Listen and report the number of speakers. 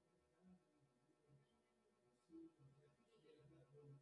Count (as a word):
zero